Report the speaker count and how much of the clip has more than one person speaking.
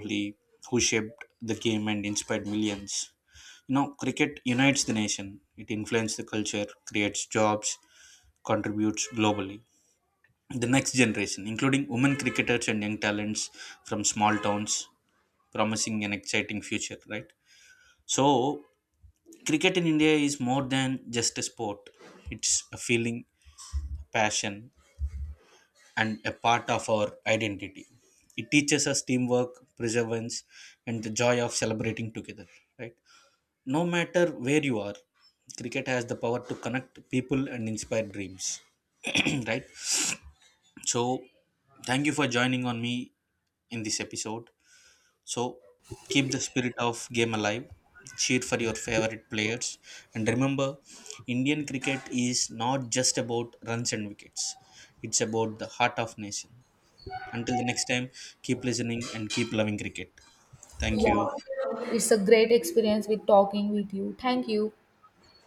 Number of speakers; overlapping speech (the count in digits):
2, no overlap